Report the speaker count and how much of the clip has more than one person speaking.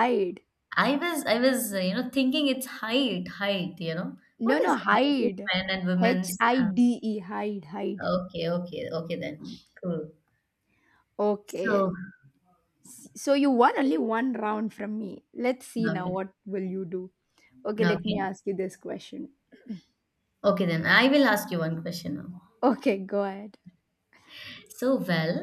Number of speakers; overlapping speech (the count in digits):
2, about 10%